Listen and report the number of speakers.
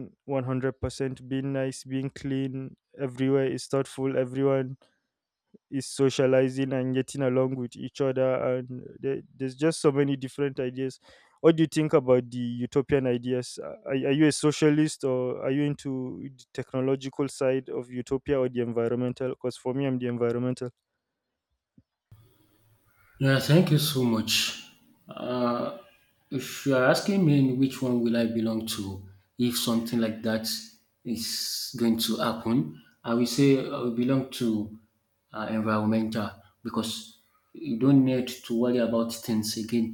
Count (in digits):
2